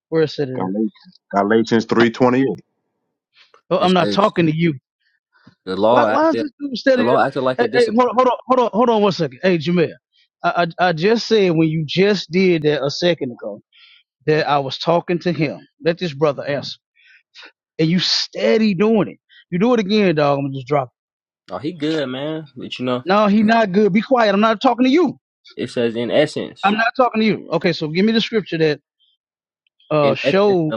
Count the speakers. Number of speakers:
3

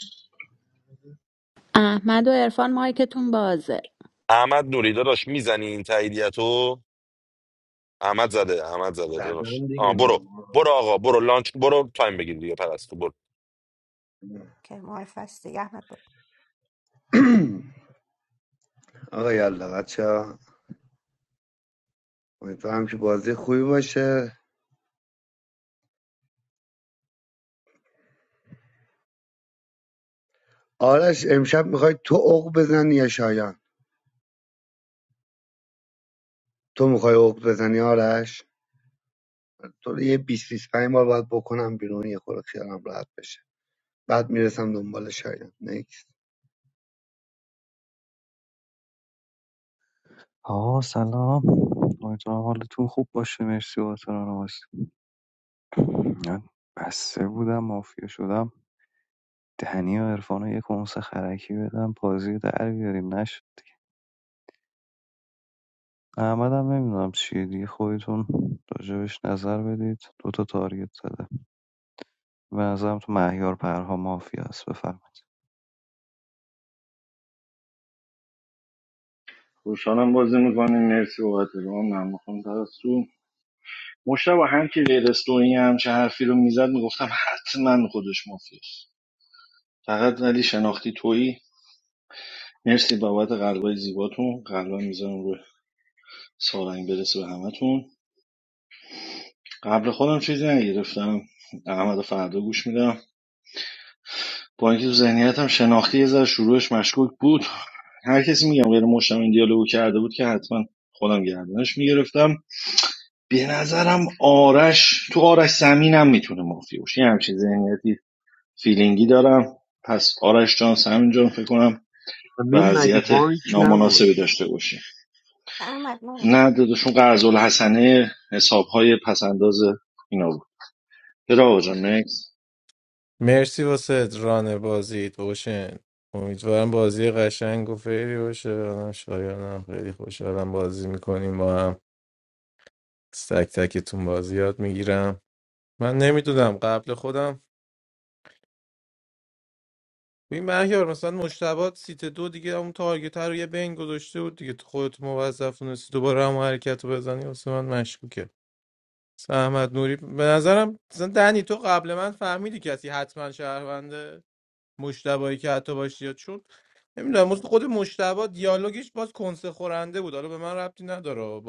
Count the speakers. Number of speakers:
7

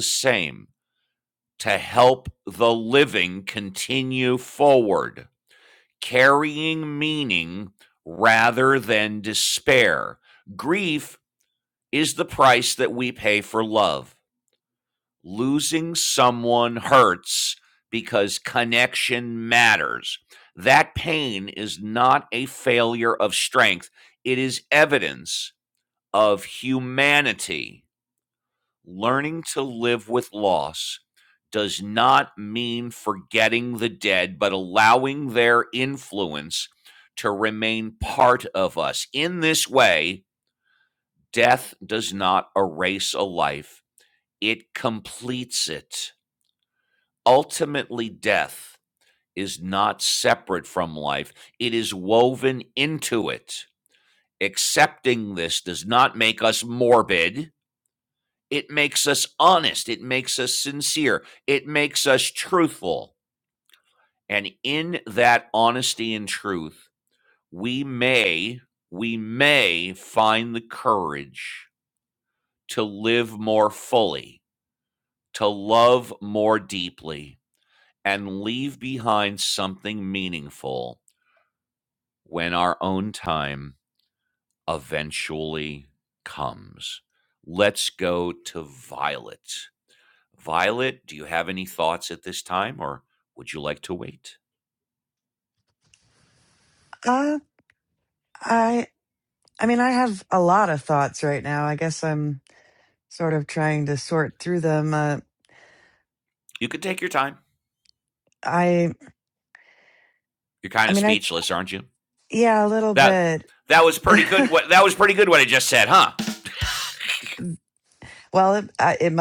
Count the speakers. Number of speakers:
2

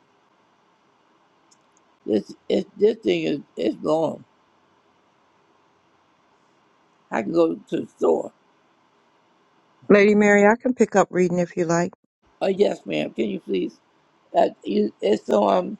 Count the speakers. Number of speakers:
2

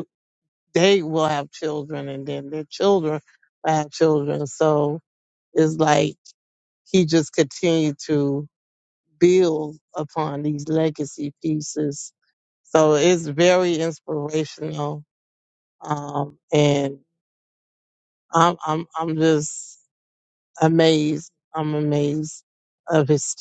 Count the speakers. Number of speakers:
1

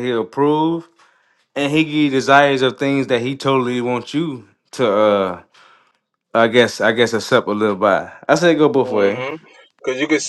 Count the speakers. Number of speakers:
2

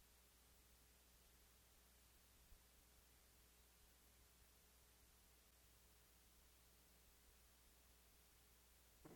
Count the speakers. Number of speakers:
0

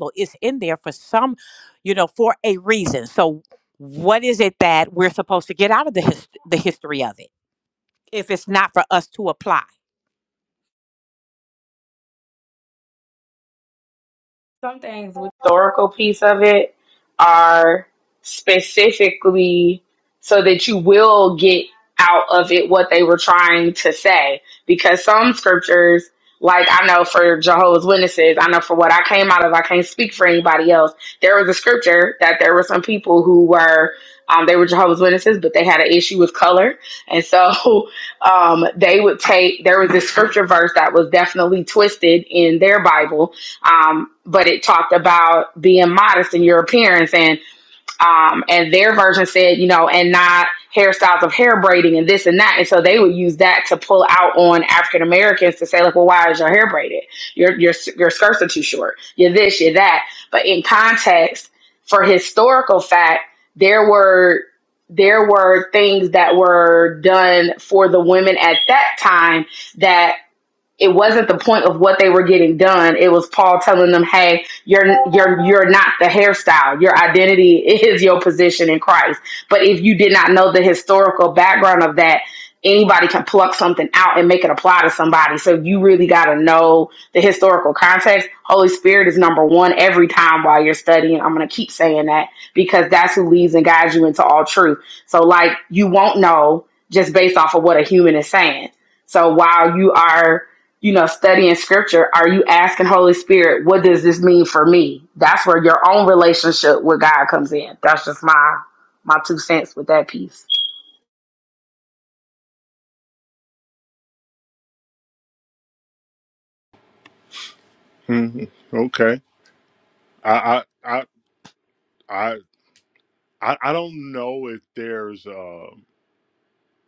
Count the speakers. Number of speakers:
3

